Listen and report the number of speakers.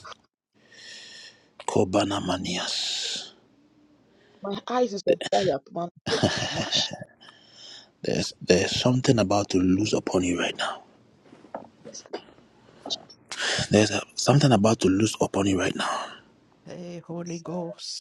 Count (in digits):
3